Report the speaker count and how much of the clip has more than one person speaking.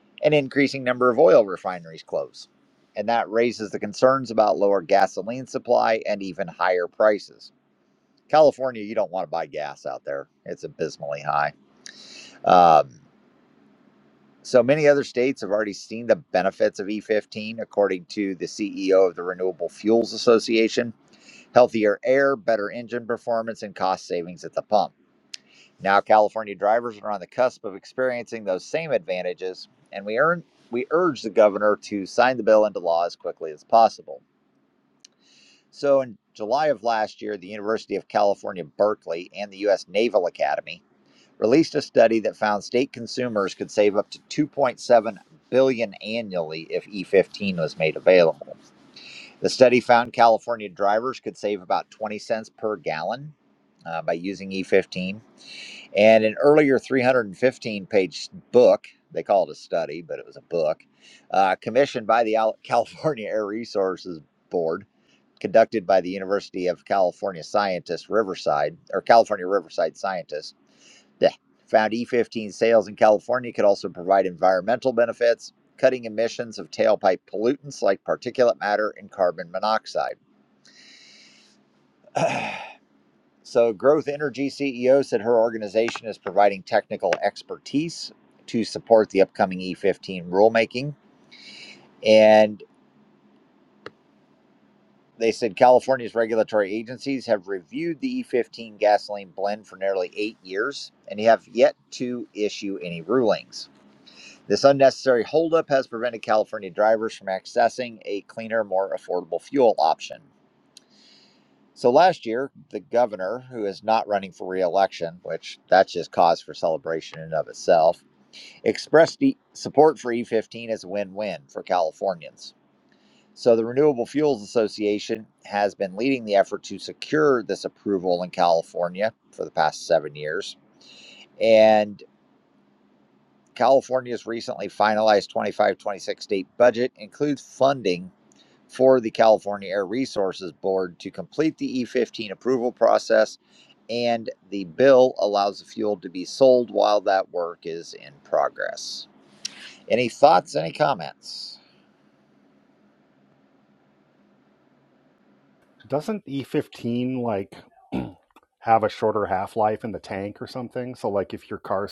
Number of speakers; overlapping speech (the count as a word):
two, no overlap